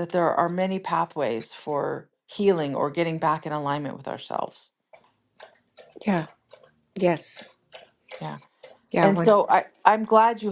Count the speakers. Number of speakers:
2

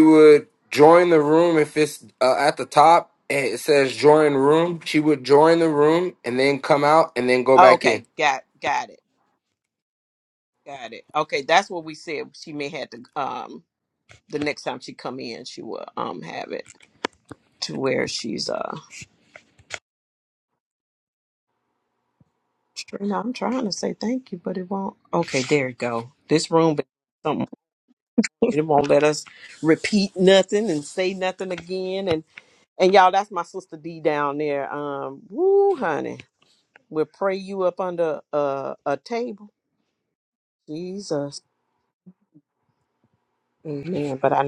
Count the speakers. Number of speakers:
2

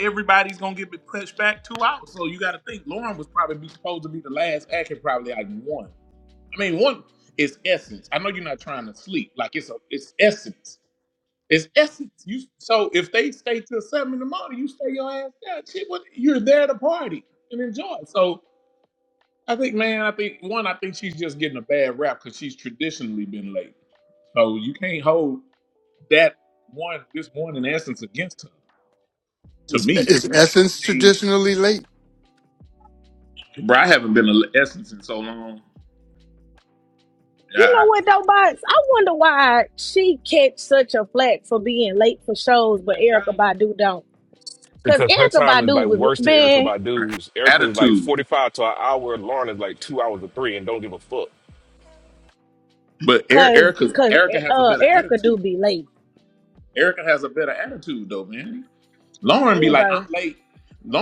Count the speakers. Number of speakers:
4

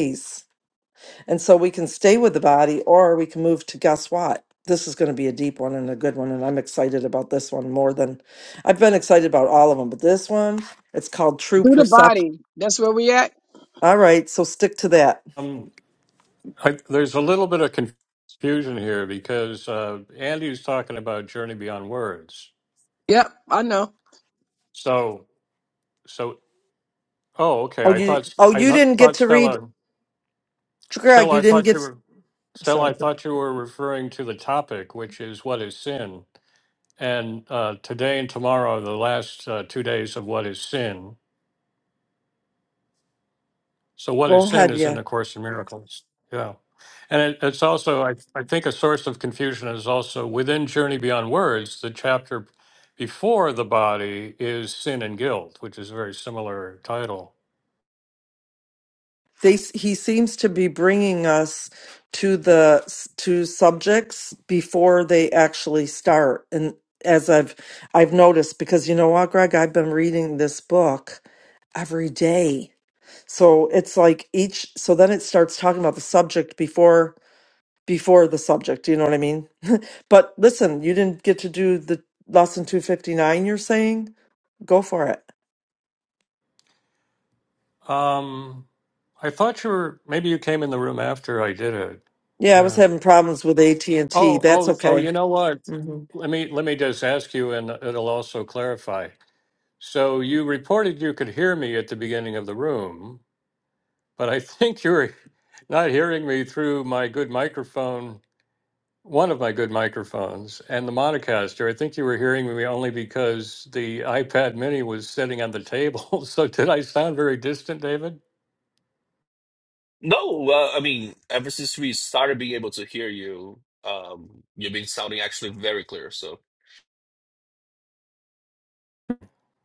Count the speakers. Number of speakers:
4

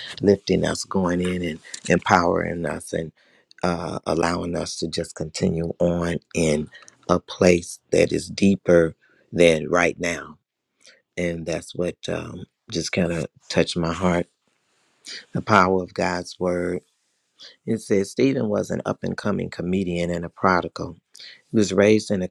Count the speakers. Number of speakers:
1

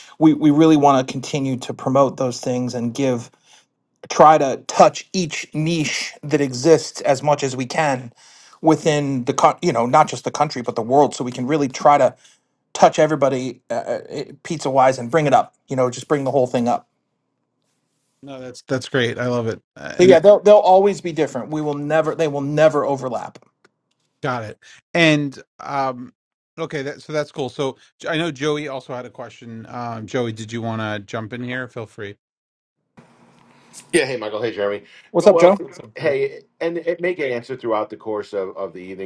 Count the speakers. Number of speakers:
3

